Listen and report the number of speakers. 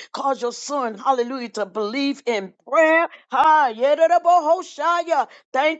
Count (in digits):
1